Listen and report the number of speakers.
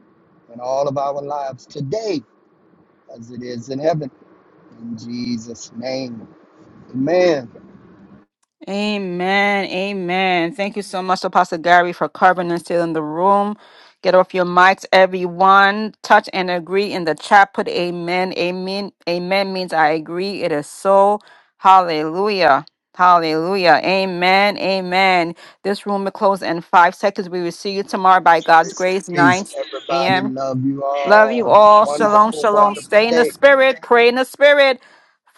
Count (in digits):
2